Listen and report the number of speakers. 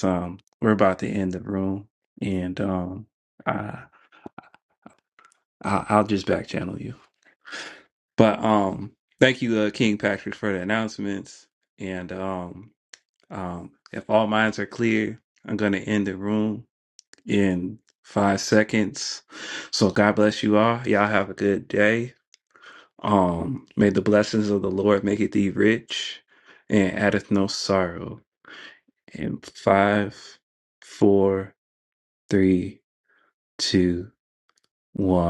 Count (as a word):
one